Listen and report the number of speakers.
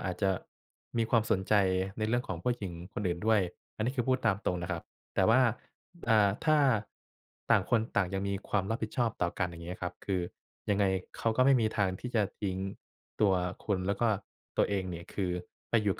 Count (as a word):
one